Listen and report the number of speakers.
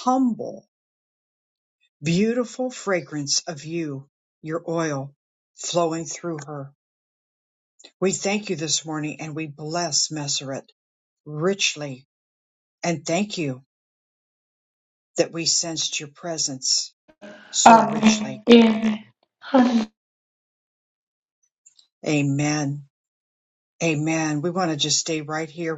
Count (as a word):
two